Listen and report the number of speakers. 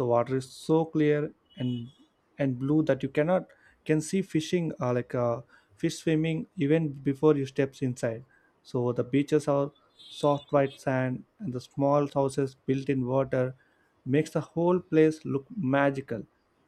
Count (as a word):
one